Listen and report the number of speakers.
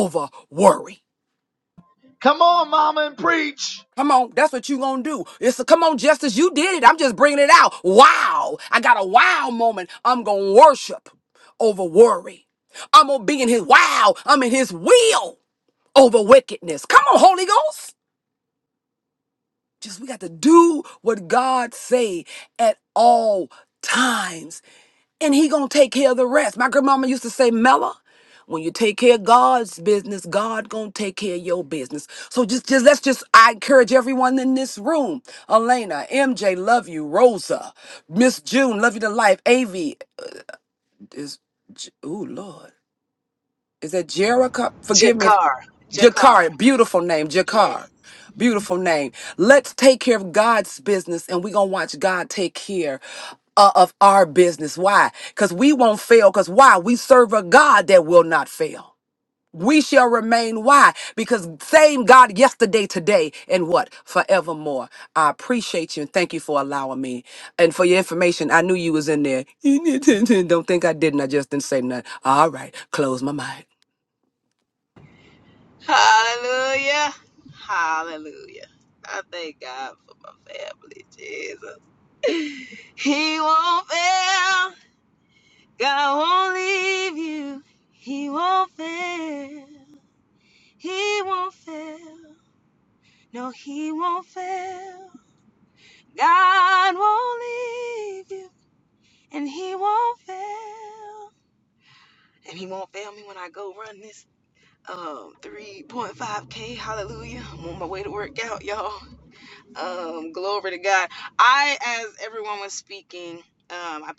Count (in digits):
3